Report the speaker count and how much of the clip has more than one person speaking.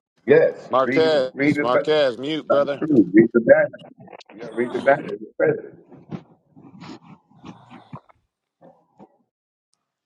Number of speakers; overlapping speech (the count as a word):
two, about 15%